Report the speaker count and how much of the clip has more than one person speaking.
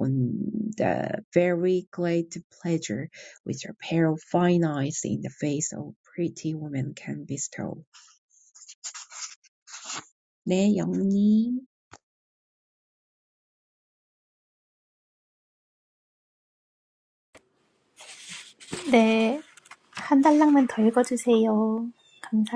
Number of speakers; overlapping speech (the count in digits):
2, no overlap